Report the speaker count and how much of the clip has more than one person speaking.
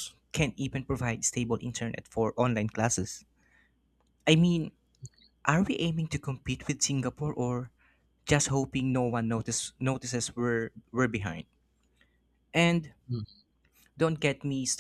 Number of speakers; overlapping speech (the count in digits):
1, no overlap